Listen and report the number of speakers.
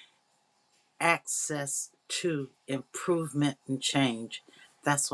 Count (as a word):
one